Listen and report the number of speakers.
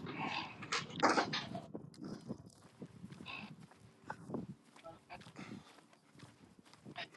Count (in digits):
0